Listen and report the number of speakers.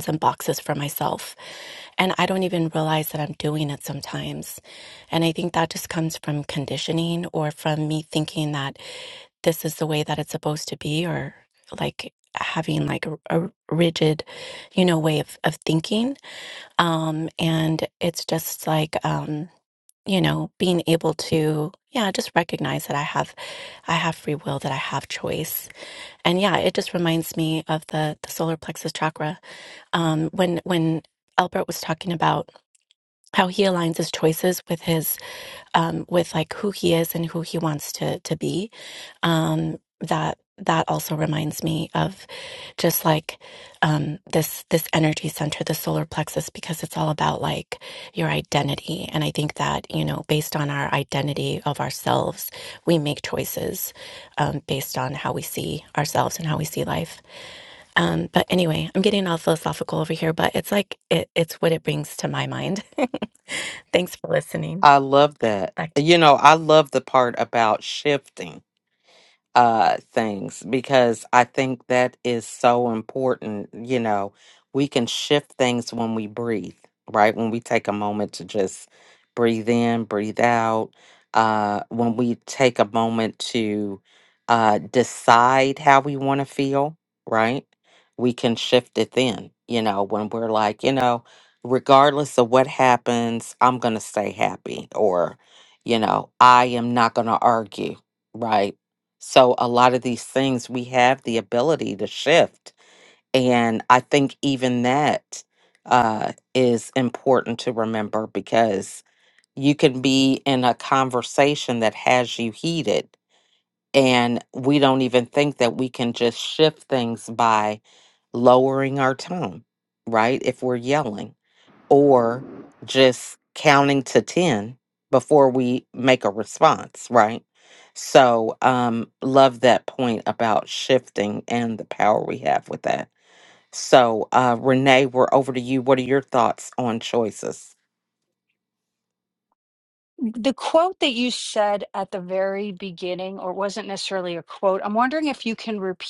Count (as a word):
three